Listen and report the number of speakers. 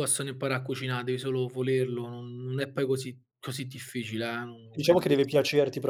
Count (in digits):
2